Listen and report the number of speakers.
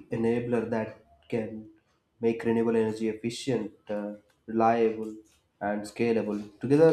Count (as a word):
one